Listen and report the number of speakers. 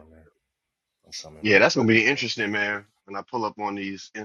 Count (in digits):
2